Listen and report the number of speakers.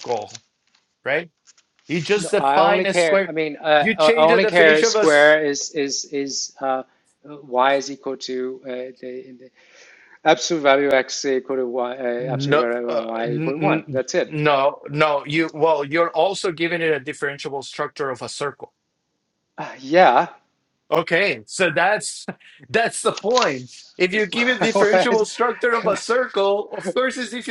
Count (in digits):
2